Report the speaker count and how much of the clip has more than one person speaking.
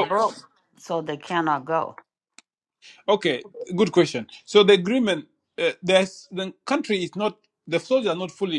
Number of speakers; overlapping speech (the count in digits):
2, about 2%